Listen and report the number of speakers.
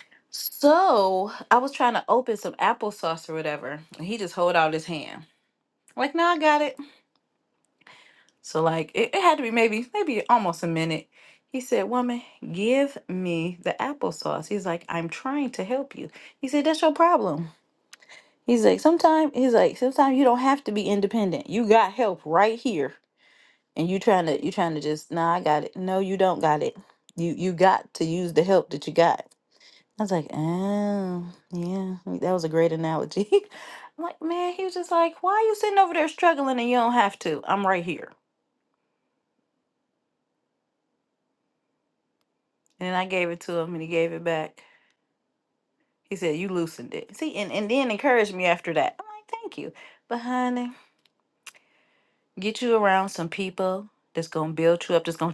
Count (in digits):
1